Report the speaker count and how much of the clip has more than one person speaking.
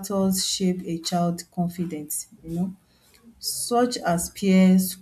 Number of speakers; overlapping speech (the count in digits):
1, no overlap